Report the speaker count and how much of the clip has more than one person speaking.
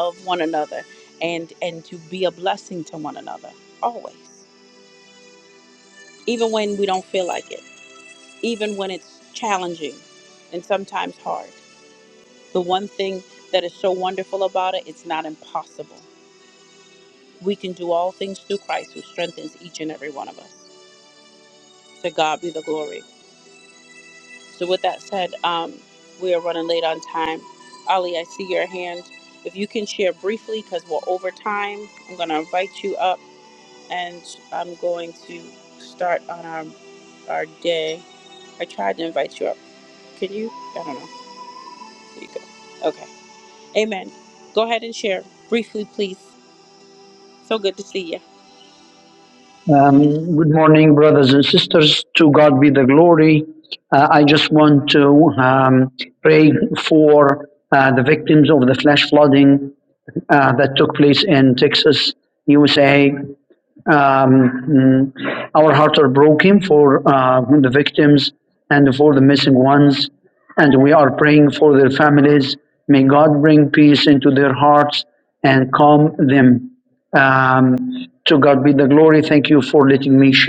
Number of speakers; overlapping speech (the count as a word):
two, no overlap